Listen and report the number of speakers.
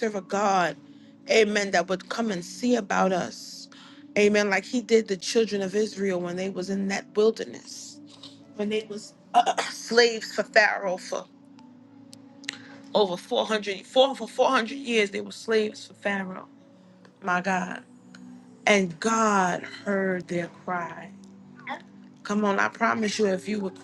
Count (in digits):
1